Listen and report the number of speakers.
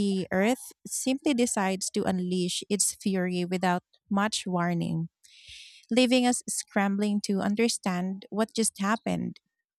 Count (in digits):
1